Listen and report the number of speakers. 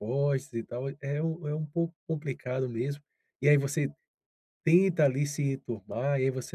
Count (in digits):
1